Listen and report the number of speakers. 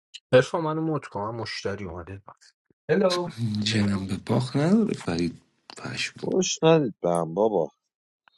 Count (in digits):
3